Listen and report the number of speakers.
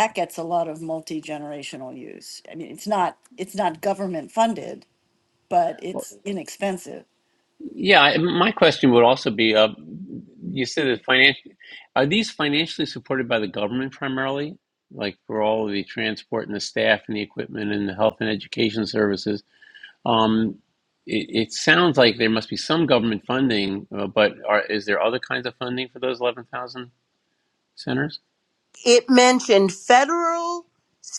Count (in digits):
3